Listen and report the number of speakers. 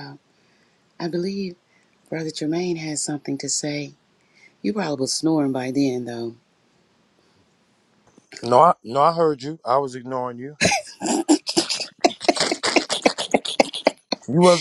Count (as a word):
two